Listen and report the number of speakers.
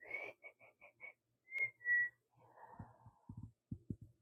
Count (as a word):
zero